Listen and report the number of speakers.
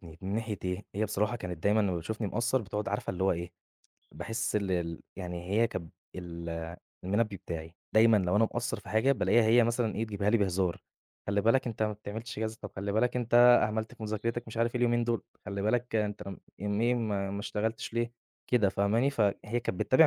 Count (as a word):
one